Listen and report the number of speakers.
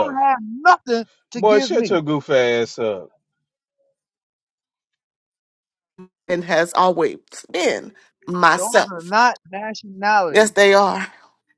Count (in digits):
3